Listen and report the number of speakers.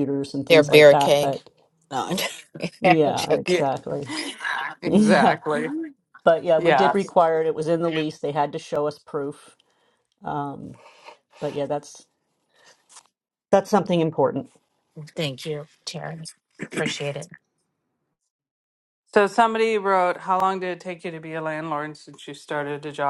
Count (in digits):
3